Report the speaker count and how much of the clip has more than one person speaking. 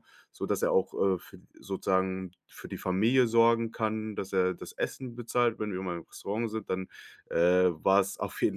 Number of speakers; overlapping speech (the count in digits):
1, no overlap